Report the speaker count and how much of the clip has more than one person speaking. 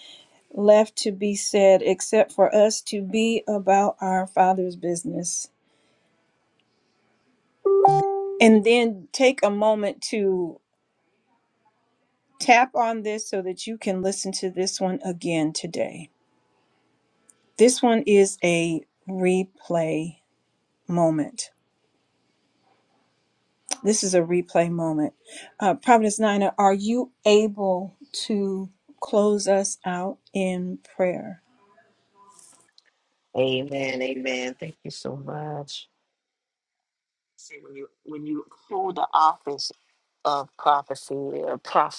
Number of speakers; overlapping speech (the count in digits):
2, no overlap